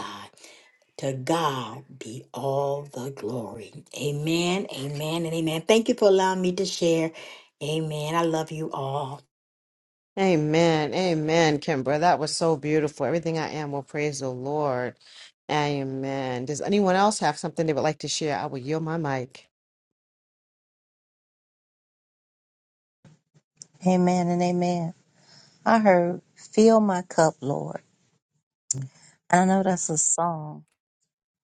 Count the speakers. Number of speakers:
3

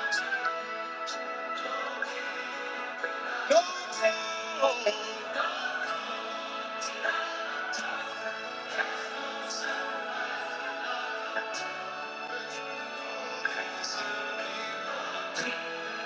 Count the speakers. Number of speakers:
0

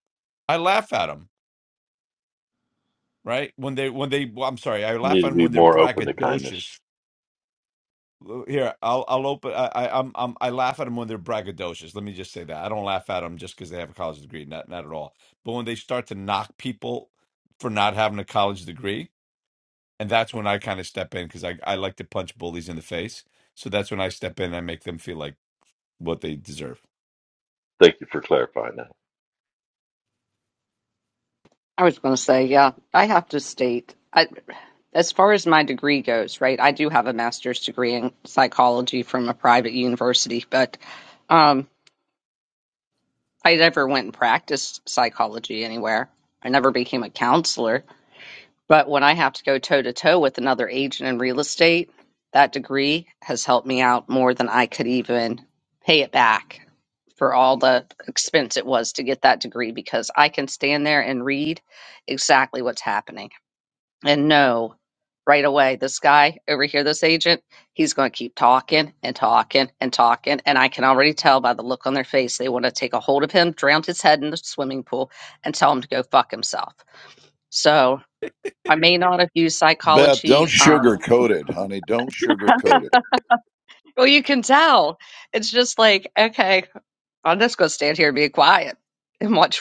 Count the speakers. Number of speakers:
4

